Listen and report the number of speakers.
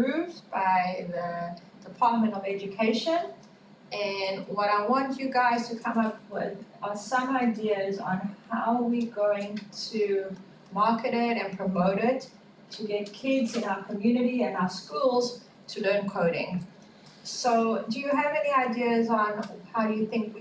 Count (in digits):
1